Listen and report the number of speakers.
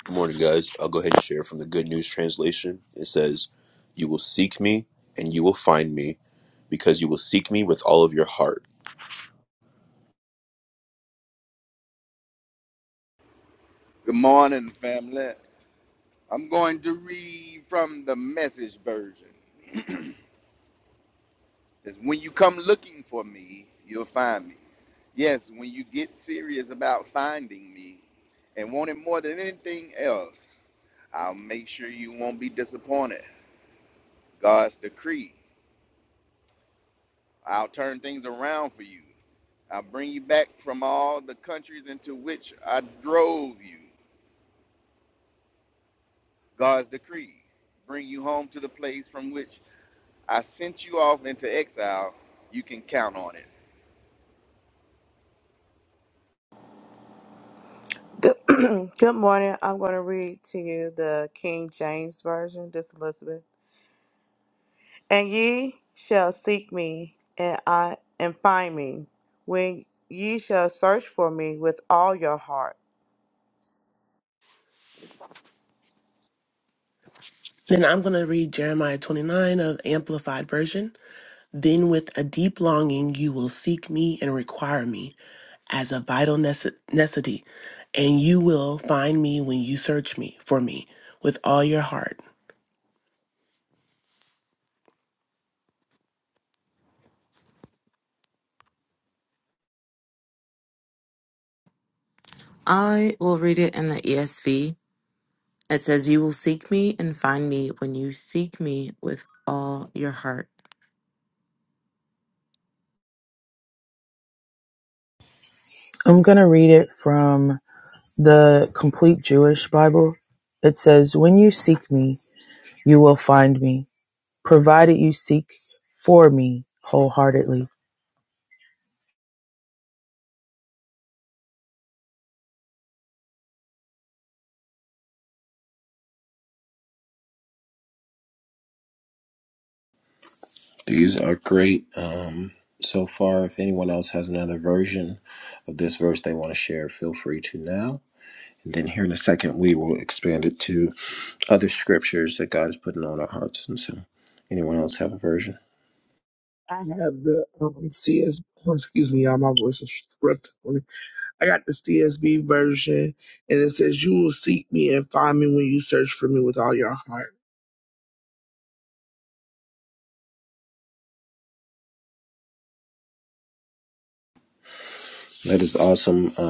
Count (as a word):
eight